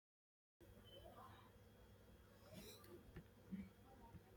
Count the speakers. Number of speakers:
zero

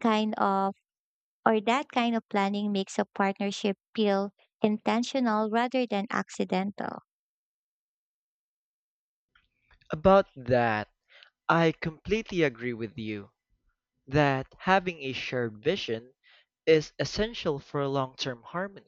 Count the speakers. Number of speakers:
two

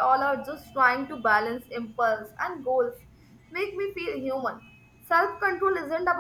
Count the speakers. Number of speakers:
one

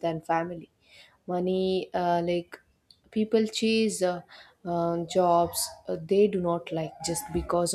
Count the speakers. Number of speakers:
one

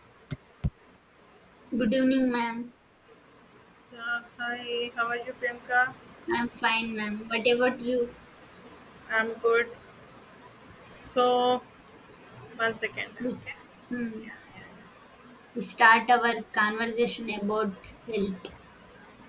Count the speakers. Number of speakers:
two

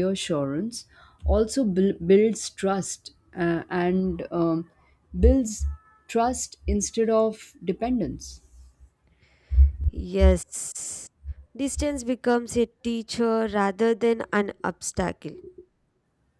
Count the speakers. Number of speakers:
two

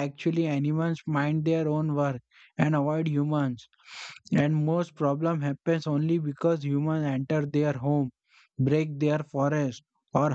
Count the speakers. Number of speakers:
one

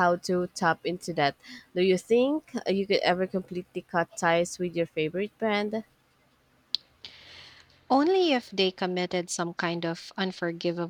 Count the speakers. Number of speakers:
two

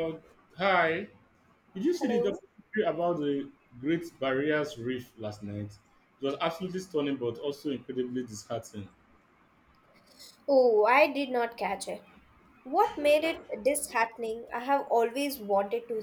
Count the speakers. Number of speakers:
two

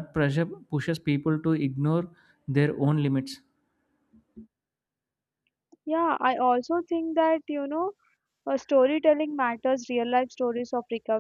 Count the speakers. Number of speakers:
two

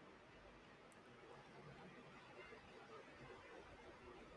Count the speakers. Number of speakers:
zero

